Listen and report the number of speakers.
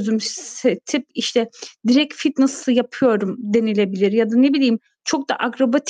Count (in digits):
1